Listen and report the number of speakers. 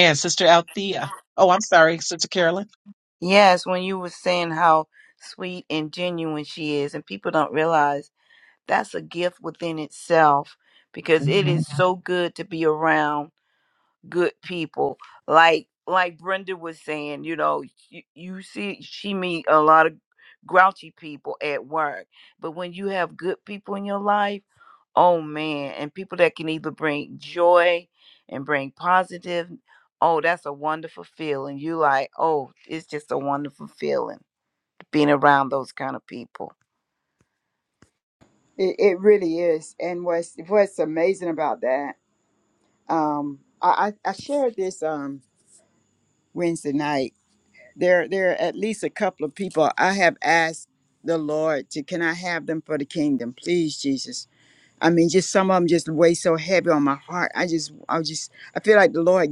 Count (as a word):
three